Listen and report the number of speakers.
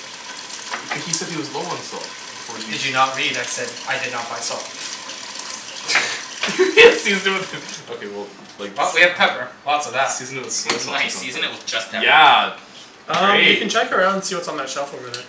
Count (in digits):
4